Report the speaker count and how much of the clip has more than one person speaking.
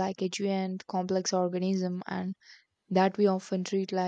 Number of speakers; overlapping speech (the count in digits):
1, no overlap